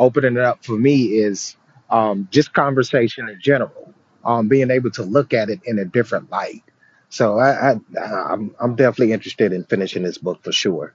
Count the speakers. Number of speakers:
one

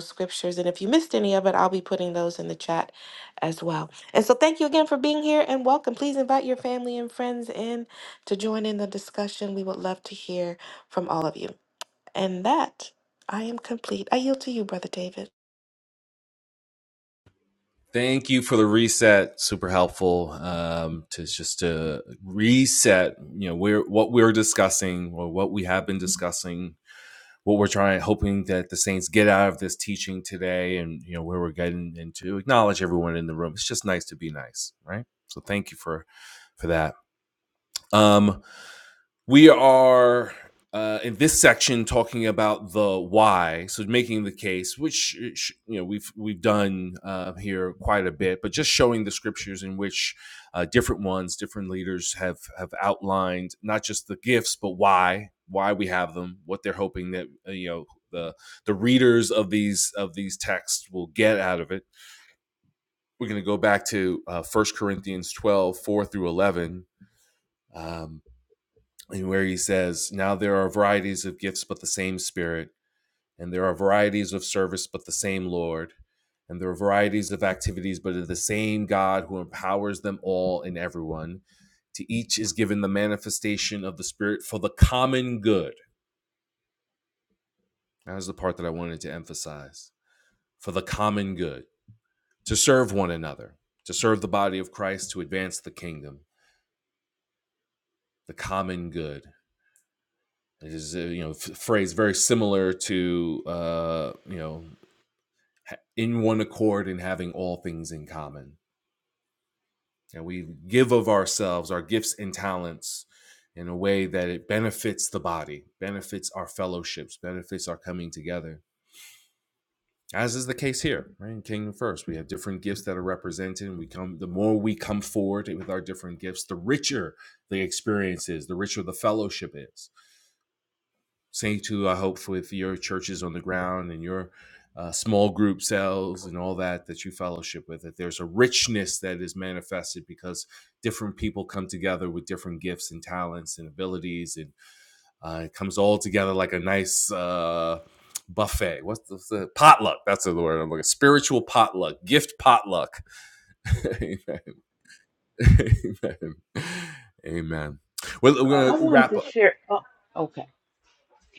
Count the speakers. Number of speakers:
three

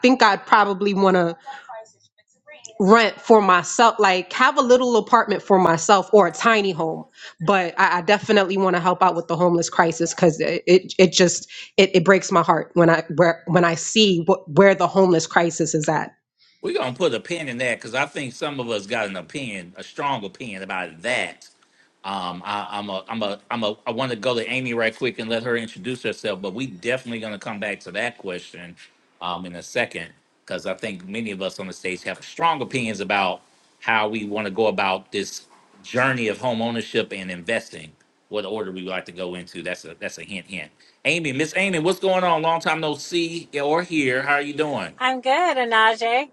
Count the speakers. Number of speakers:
three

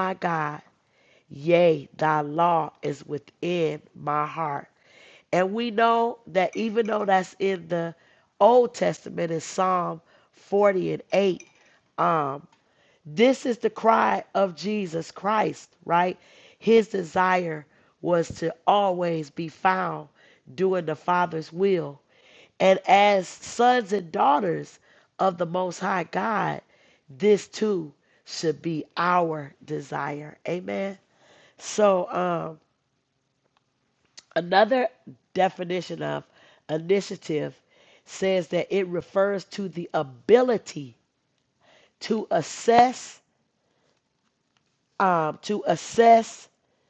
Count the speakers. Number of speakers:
one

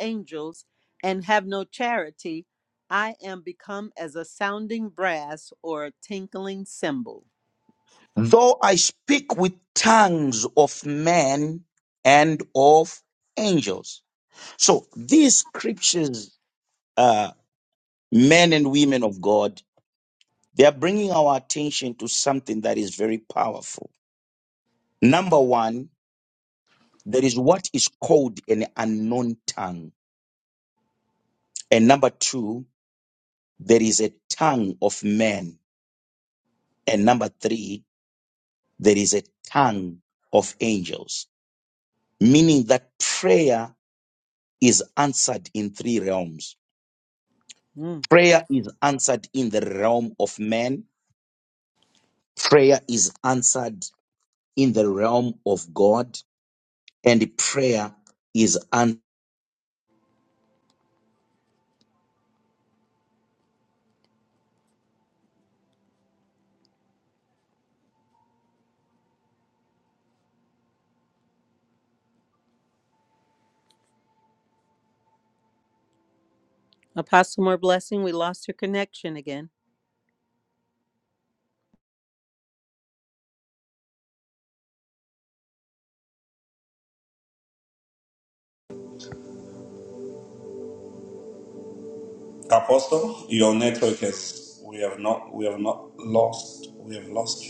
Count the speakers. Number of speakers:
three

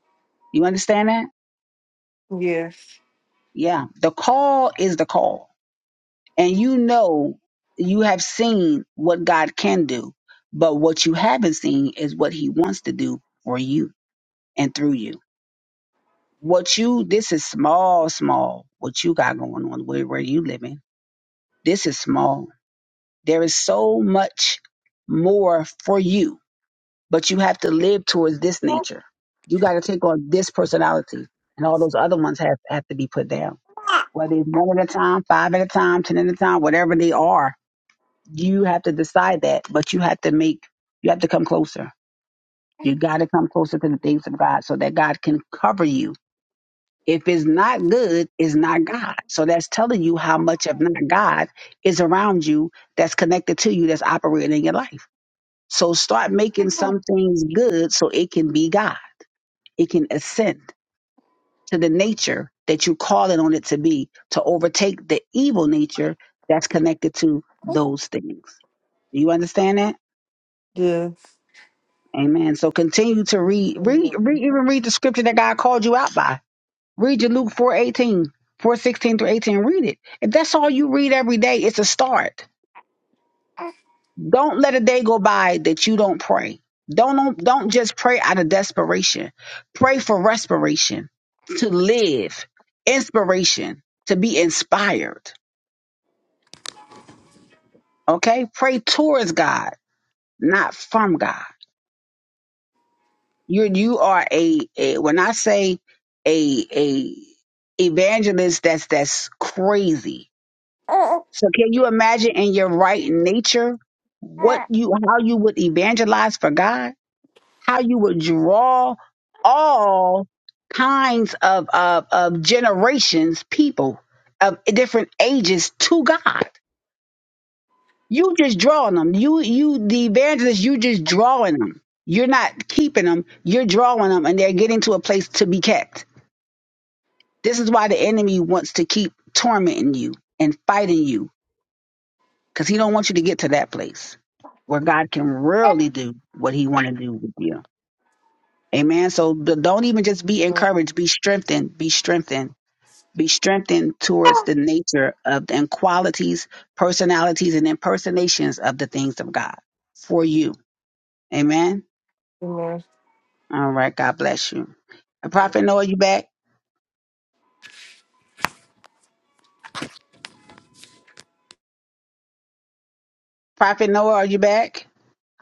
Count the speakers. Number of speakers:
two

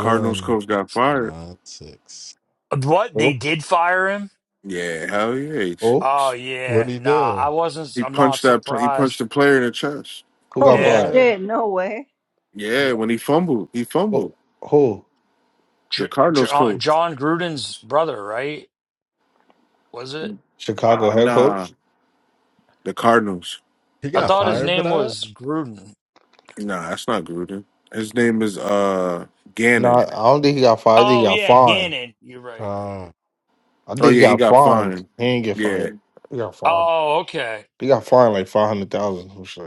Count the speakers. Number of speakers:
five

